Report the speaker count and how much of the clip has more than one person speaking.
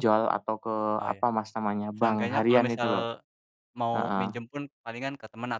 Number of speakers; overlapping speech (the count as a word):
two, about 27%